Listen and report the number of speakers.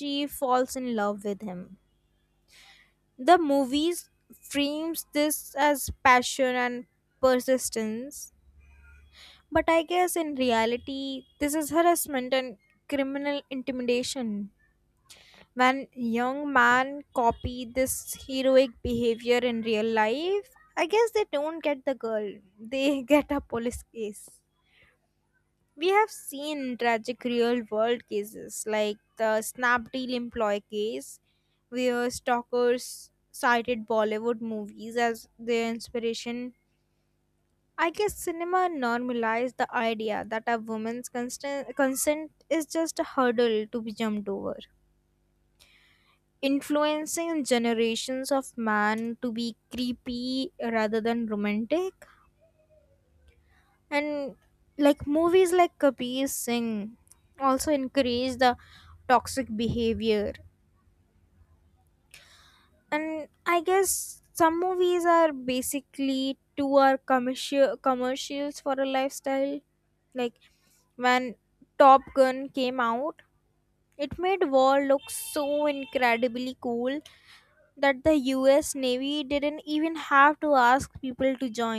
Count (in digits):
1